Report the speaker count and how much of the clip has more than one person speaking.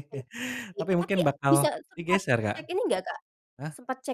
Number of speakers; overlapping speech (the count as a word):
two, about 36%